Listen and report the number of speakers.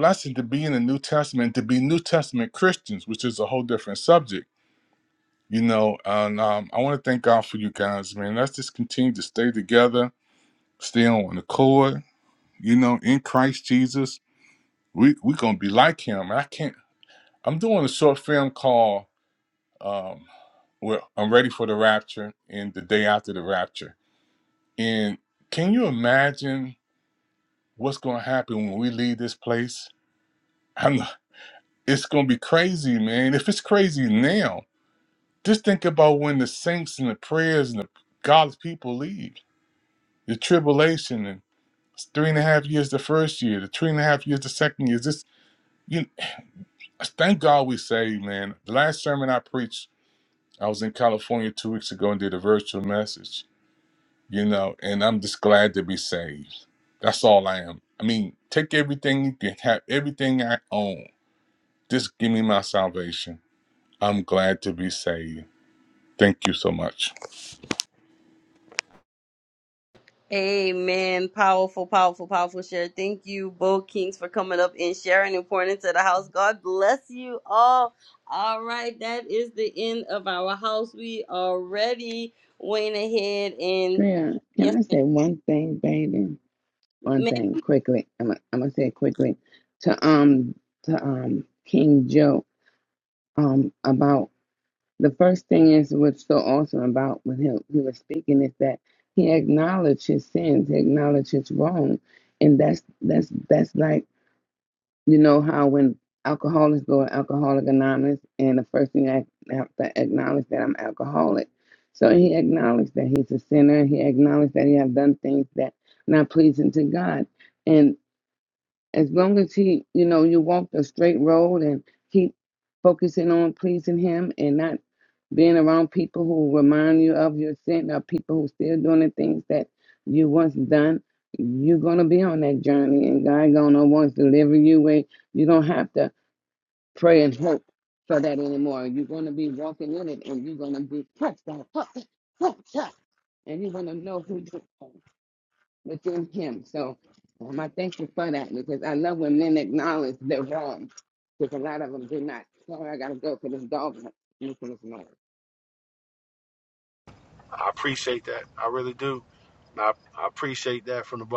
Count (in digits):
4